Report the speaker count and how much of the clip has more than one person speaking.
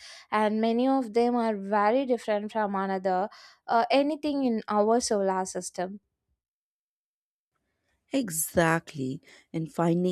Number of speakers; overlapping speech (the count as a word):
two, no overlap